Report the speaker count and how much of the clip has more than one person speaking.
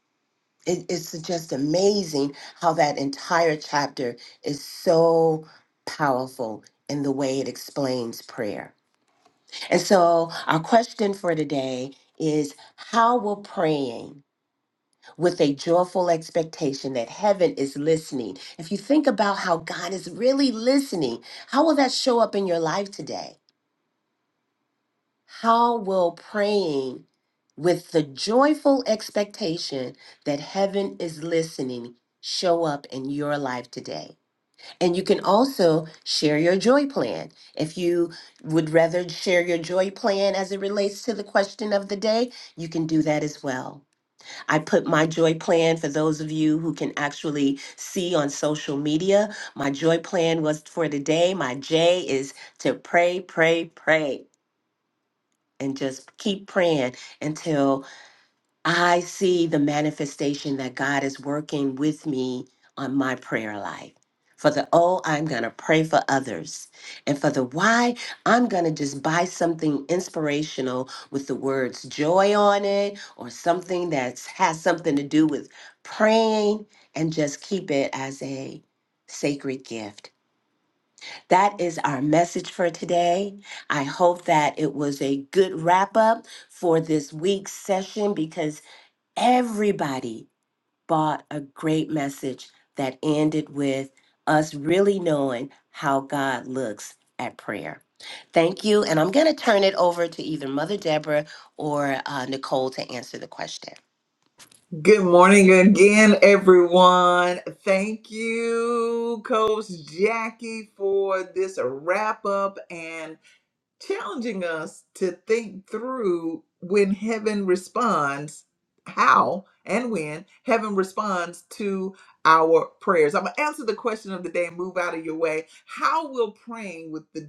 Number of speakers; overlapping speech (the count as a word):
two, no overlap